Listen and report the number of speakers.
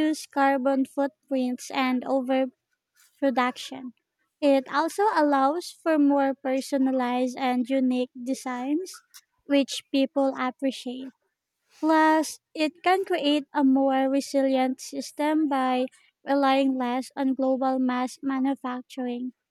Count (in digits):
1